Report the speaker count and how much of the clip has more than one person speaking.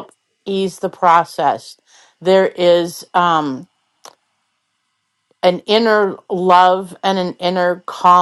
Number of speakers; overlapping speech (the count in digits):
1, no overlap